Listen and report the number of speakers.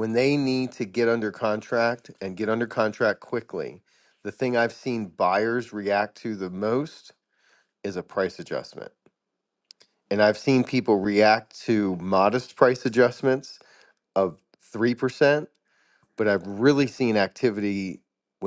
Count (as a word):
one